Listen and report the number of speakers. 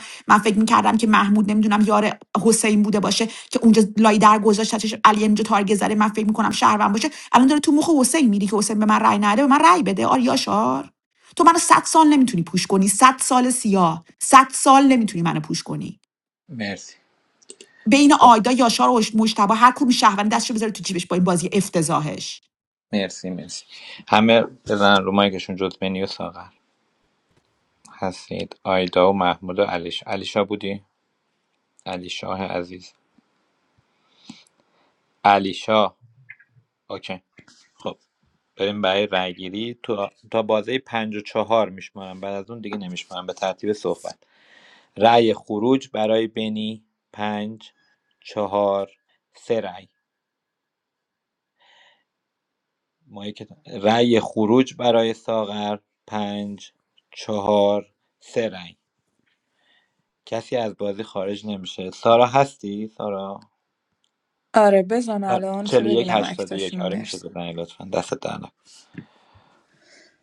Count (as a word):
three